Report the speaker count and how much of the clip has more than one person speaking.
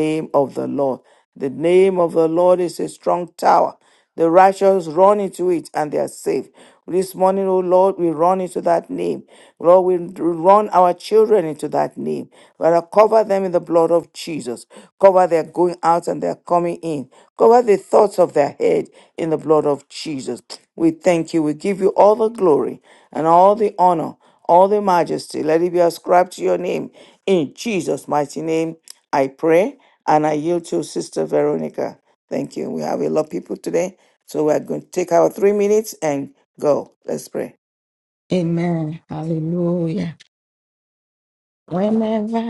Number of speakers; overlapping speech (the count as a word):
two, no overlap